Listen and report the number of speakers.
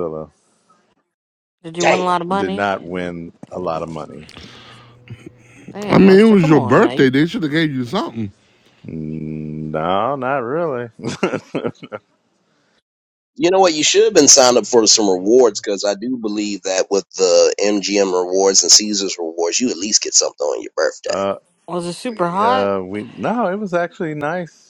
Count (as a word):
four